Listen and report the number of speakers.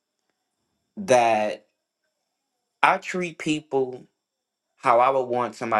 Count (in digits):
1